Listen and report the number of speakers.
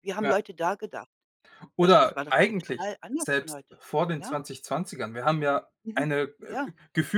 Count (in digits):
2